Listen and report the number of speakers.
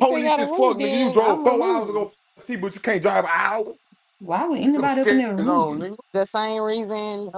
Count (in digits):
3